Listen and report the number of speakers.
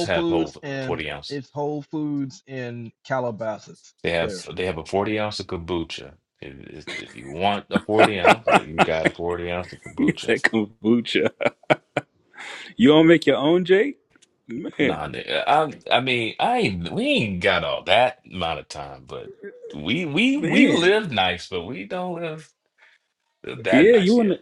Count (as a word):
three